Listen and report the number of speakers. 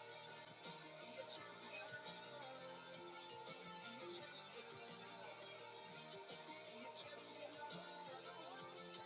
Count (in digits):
0